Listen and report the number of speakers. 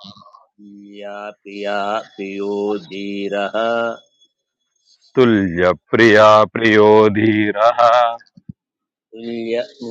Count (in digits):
2